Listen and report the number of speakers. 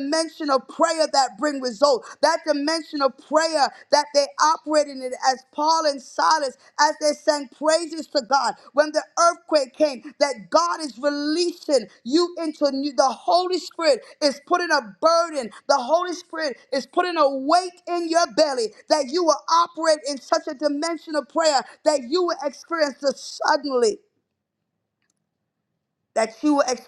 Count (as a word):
one